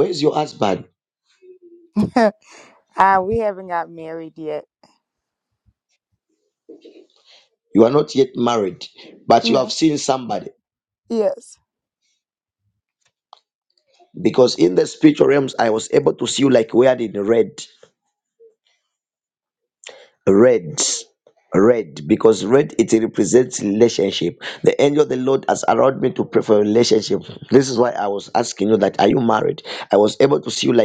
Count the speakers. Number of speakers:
2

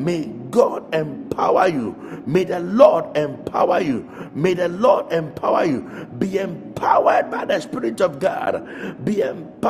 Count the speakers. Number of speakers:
1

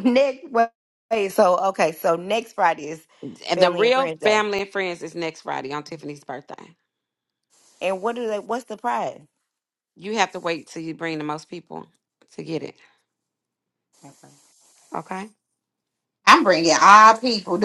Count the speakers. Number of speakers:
3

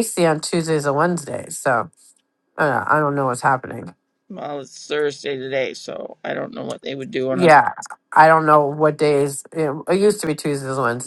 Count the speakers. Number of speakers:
2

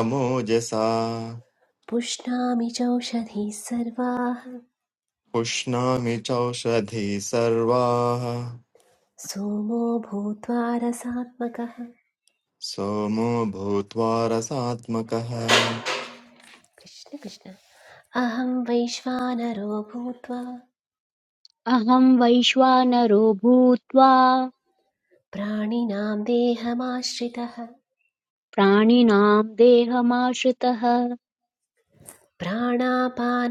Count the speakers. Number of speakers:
3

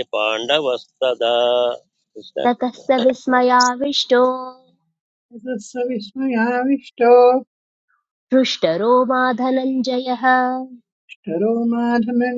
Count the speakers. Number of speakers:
3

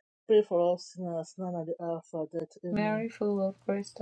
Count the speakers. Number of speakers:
2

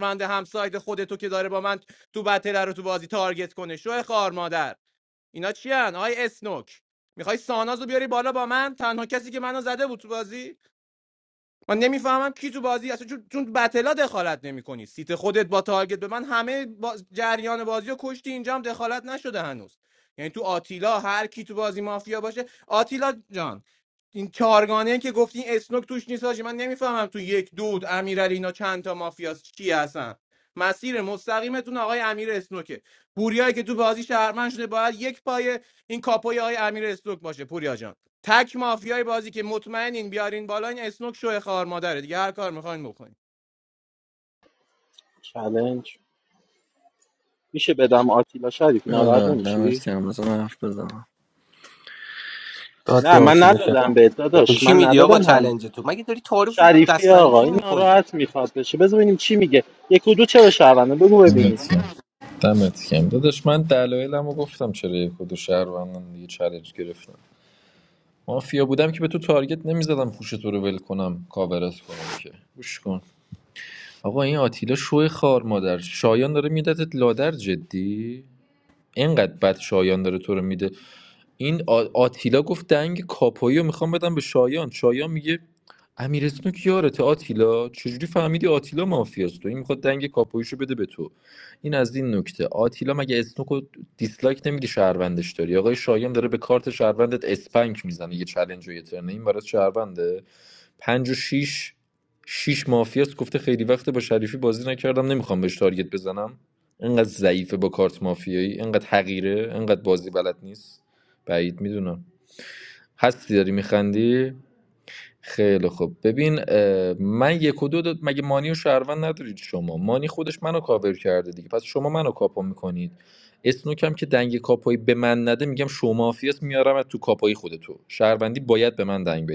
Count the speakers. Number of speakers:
5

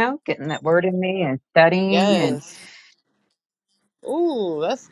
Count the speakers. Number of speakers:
2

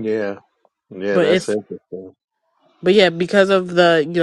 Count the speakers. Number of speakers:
2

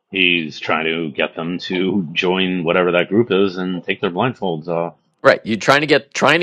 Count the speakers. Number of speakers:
2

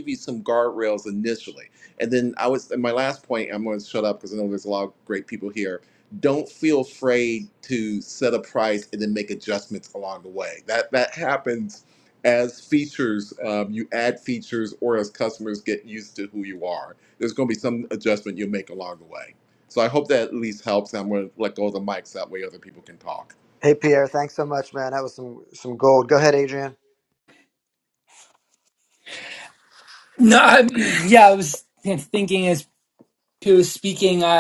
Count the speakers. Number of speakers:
3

